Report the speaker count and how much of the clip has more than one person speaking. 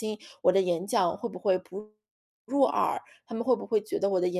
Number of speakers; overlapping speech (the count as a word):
one, no overlap